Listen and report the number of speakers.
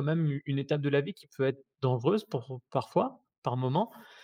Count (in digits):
1